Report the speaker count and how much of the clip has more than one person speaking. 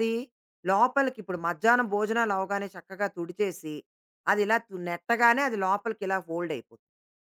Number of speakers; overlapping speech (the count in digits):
1, no overlap